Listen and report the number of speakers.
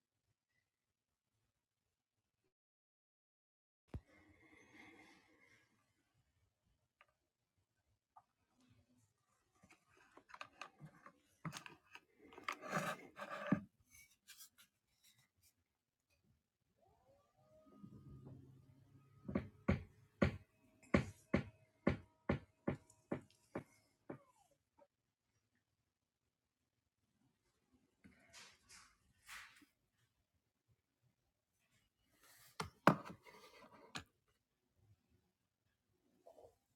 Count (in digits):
0